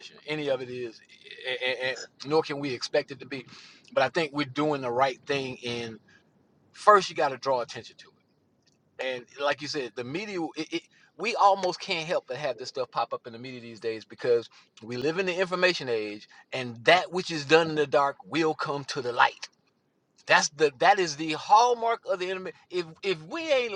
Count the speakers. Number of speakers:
1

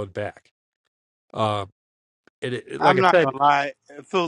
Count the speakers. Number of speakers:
2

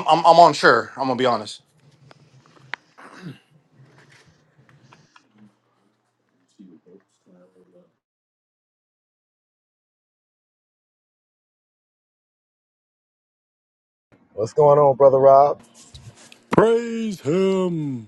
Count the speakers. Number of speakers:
3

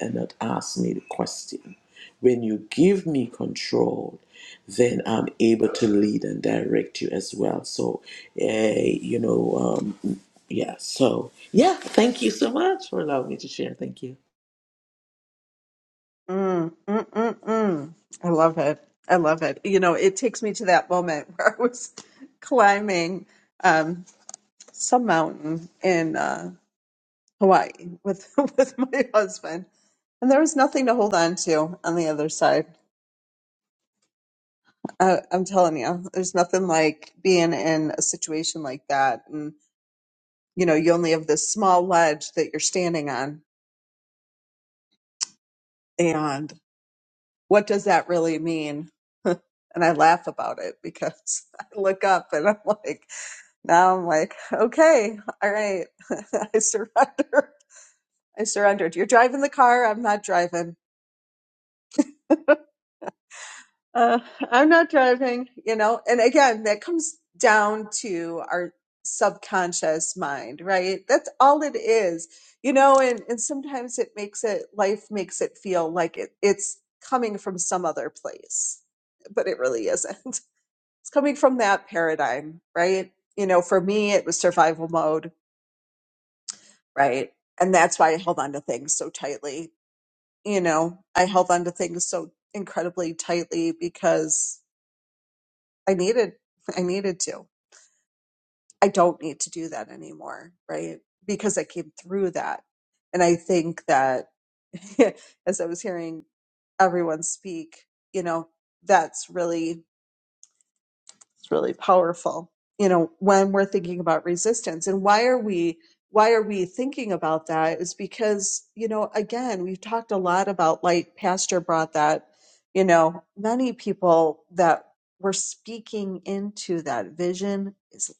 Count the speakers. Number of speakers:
2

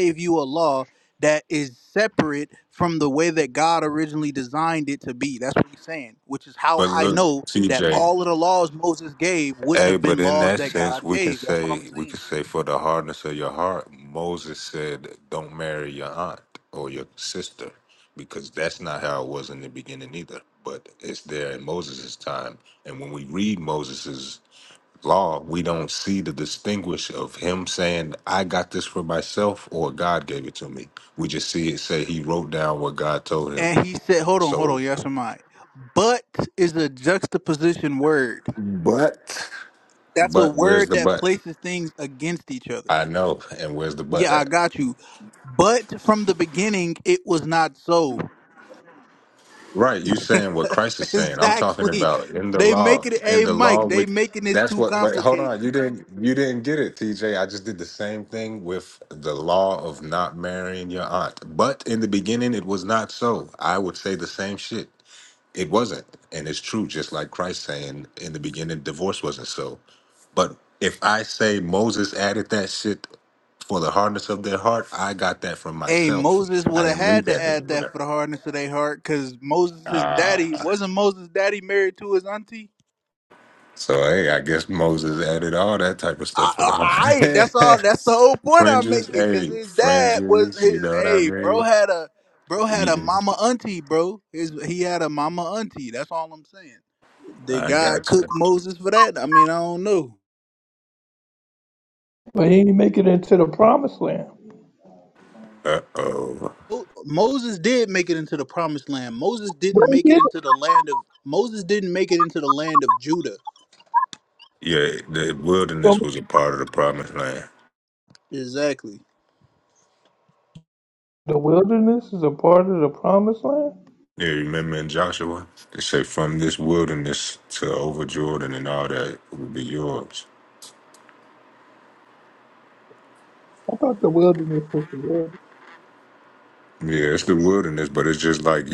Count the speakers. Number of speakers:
3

